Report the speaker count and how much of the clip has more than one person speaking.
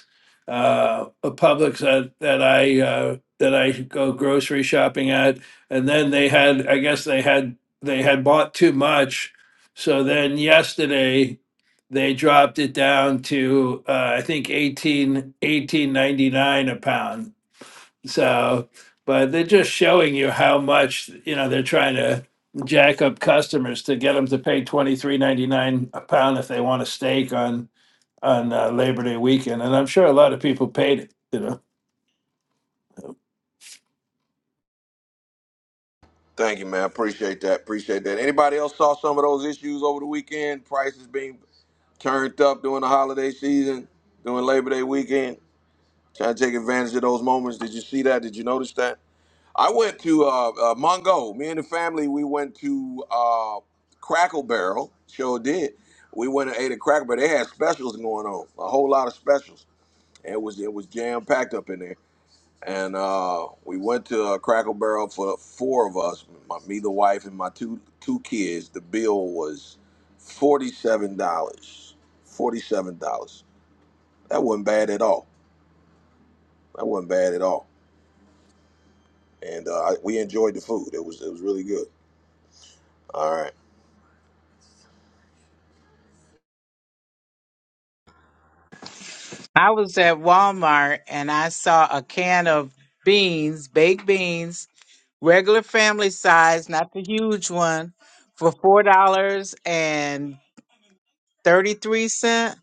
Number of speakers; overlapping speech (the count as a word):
three, no overlap